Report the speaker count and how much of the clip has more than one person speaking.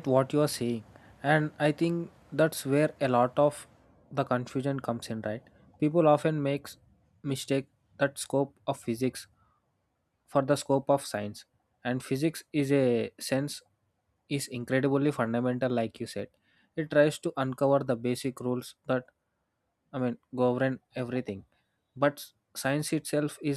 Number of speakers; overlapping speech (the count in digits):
1, no overlap